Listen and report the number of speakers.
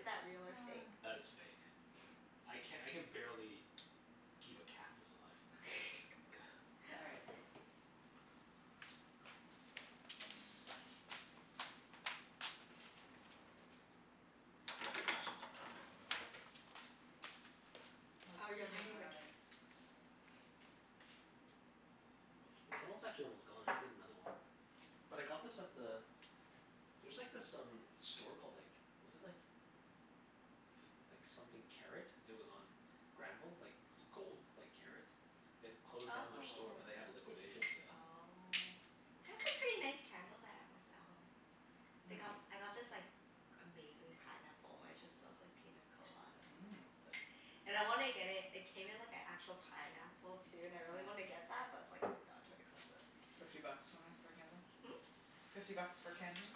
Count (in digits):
3